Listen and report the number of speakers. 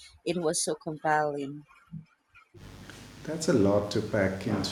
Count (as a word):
two